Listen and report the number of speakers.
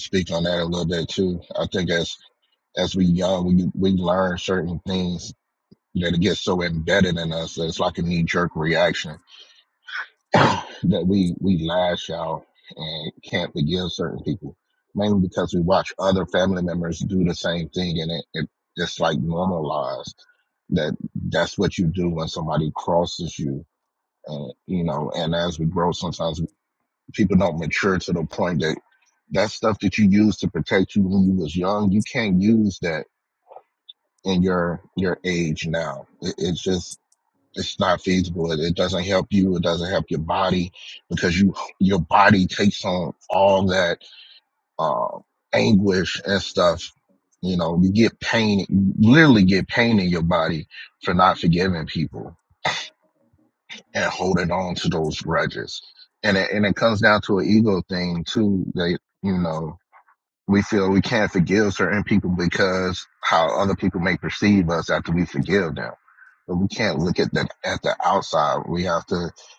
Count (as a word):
one